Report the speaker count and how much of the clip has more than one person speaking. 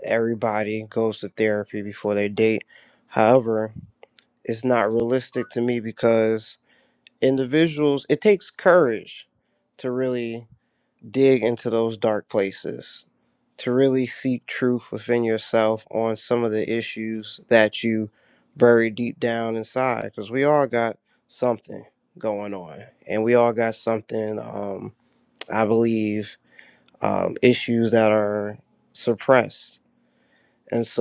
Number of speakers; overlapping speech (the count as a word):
one, no overlap